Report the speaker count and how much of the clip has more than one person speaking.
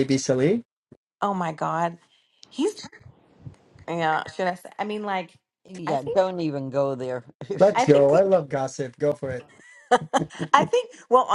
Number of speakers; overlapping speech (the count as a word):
three, about 5%